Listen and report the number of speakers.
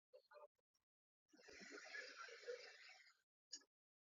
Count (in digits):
0